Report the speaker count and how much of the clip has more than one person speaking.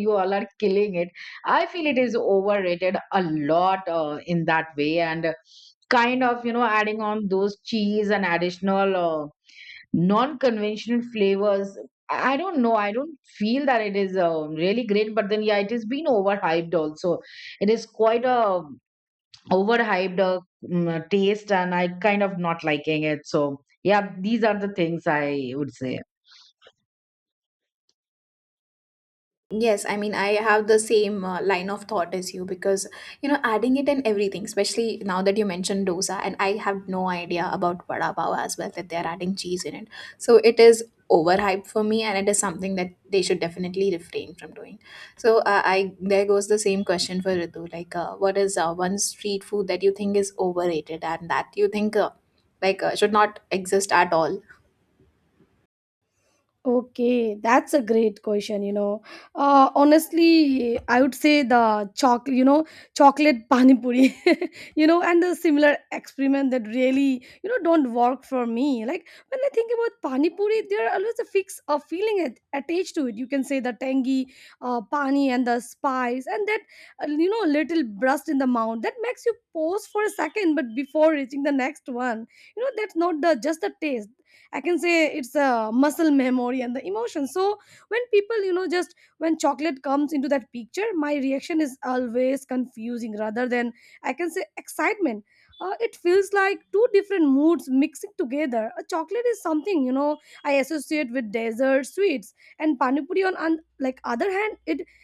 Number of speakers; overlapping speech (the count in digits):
3, no overlap